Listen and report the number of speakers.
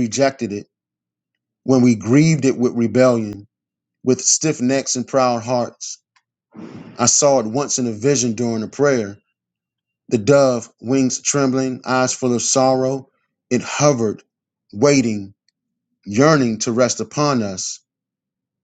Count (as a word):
one